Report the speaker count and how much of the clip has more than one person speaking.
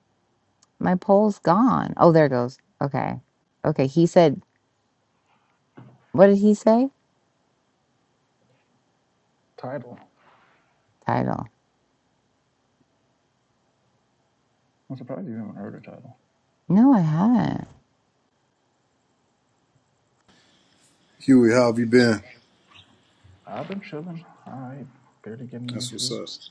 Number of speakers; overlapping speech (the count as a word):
three, about 2%